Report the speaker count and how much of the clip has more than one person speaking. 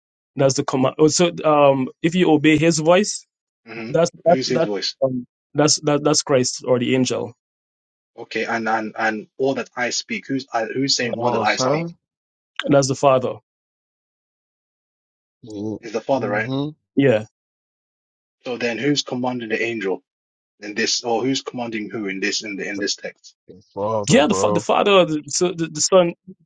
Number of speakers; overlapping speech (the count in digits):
3, about 9%